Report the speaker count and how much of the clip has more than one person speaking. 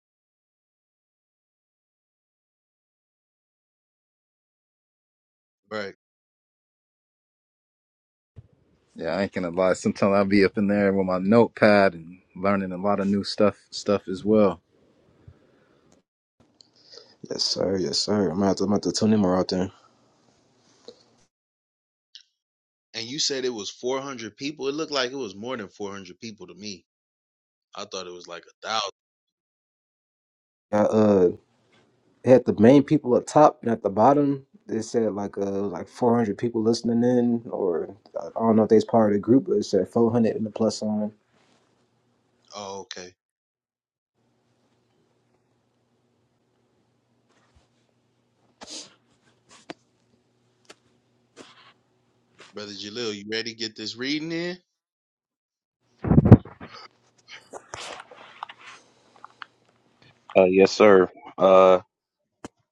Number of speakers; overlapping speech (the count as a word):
four, no overlap